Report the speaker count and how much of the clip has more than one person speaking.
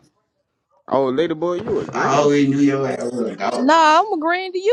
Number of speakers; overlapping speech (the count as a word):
three, about 14%